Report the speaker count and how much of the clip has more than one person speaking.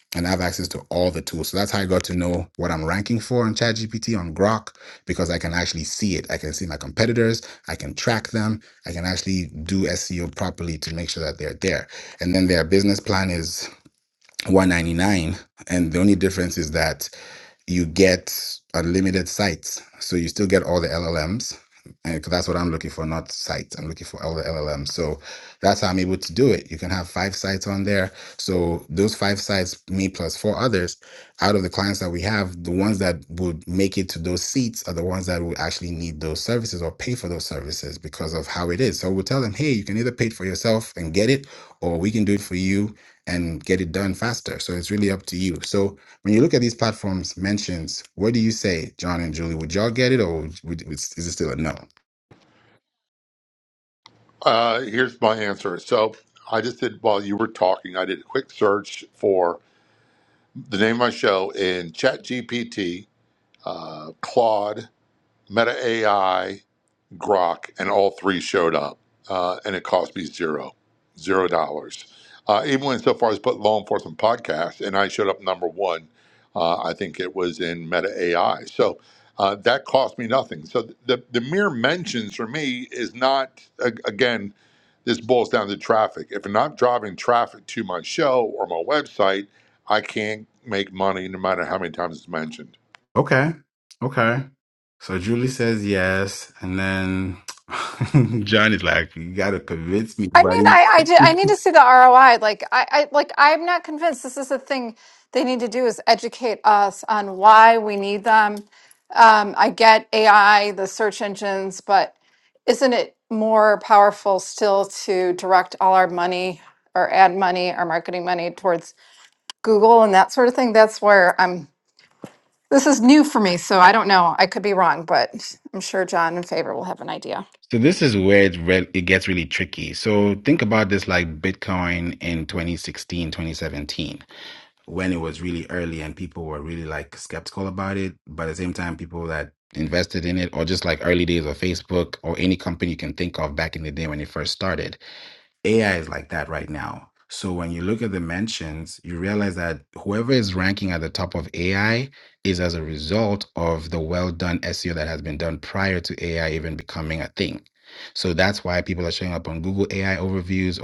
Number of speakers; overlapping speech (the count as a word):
three, under 1%